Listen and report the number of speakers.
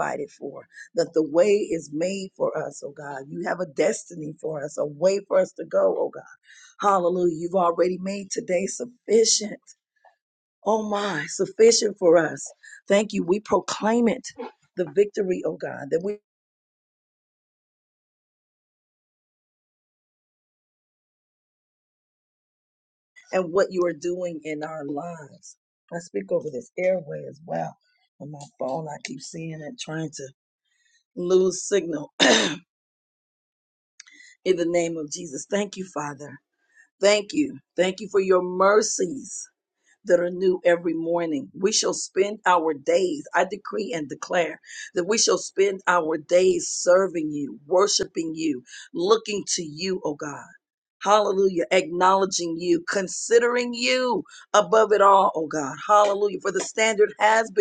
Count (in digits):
1